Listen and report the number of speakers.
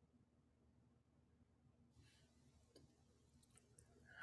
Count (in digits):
0